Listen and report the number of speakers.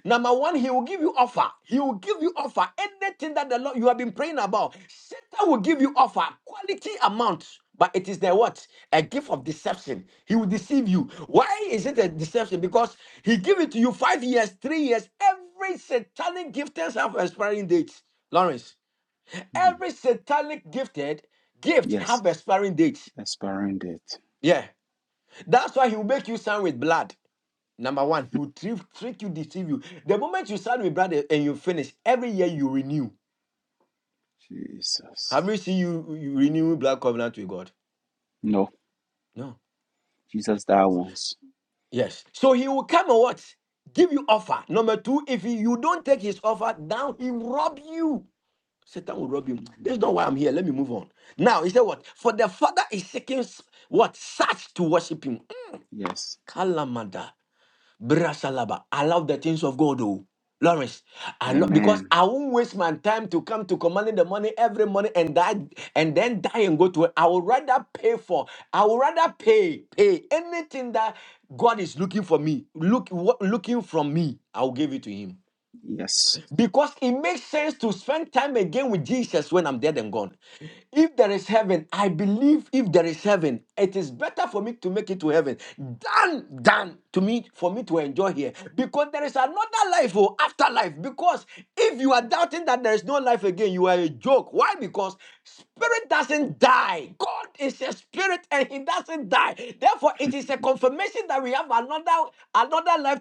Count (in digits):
2